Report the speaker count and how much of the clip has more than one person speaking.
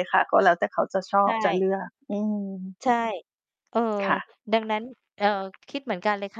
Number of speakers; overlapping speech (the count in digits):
2, about 1%